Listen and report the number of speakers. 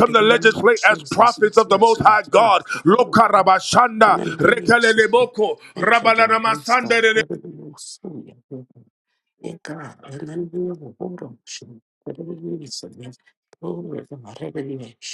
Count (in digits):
2